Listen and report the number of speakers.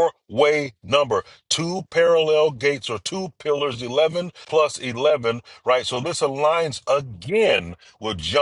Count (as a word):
one